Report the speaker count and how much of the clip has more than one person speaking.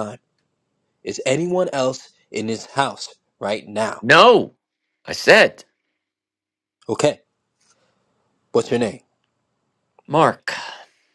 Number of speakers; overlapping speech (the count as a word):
two, no overlap